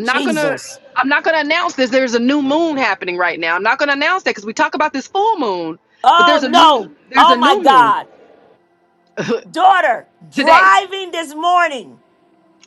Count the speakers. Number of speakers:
two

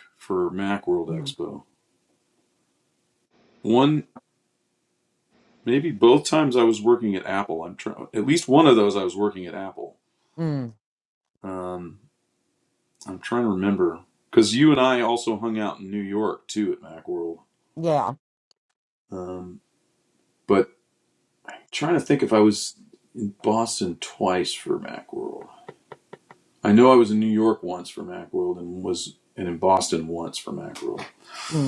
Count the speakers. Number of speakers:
two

